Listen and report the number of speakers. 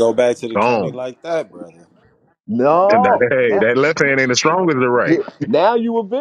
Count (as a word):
three